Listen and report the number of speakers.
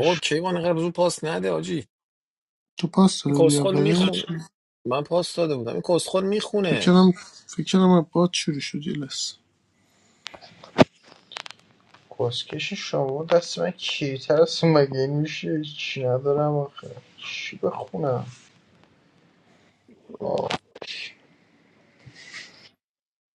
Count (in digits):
3